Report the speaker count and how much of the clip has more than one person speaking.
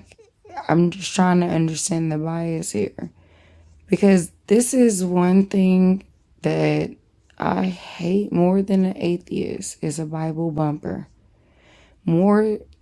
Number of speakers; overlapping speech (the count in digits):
1, no overlap